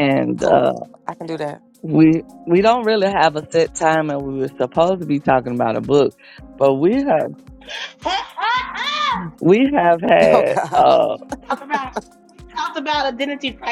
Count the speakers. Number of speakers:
3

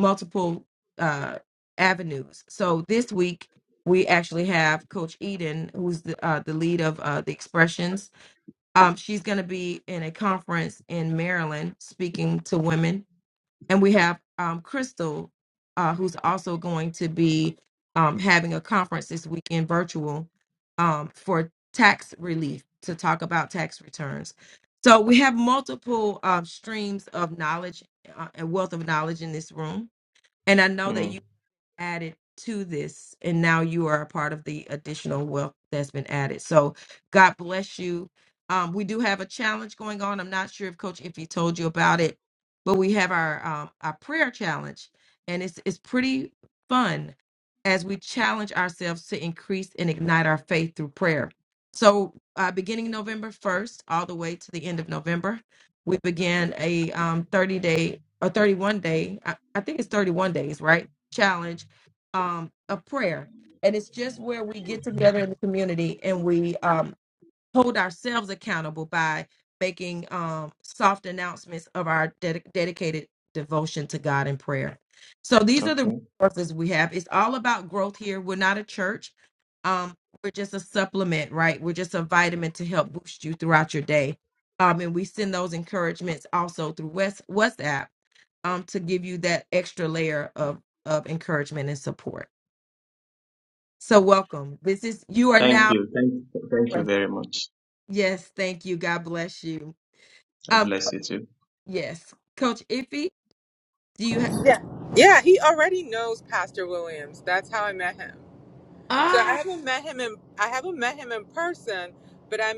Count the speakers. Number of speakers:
3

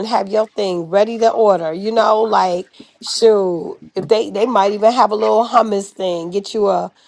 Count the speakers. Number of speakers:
1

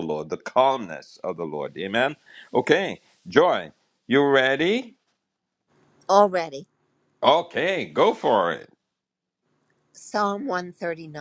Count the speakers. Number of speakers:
2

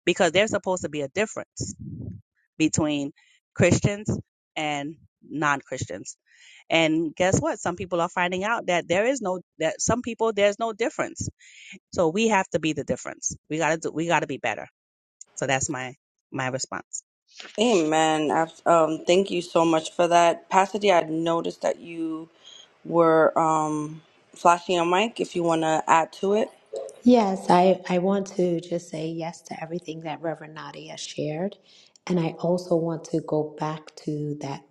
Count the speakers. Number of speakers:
3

